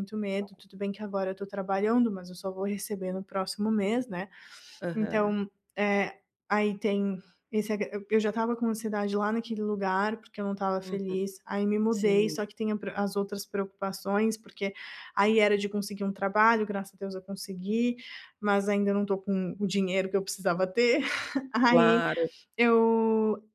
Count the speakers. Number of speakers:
2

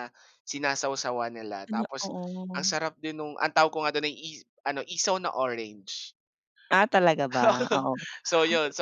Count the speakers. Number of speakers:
2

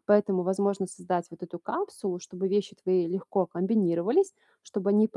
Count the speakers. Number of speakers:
1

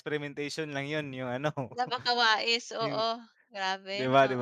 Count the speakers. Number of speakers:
2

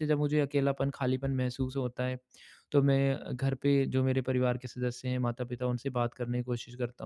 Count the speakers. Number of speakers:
1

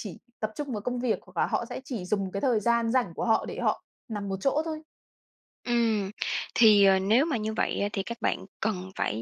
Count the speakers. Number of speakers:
2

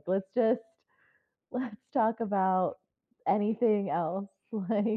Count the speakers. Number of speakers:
1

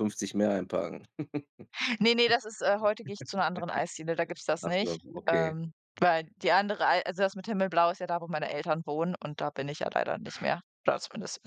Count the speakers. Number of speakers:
2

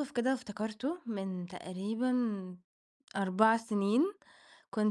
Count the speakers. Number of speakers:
1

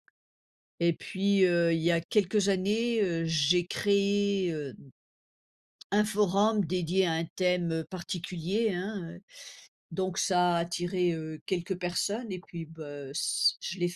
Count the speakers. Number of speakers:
1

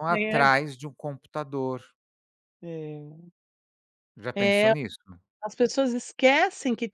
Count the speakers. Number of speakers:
2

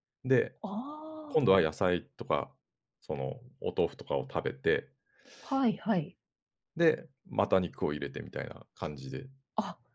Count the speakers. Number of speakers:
2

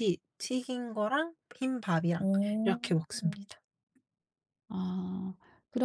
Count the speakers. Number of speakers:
2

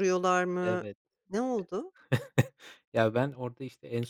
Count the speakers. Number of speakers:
2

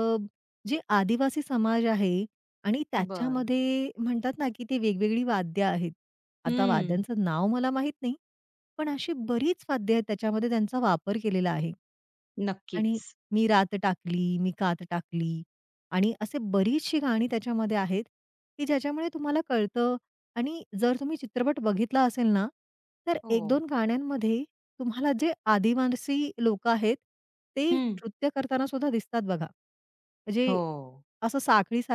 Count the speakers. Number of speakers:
2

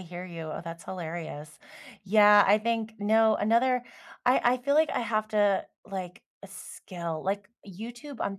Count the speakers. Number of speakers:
1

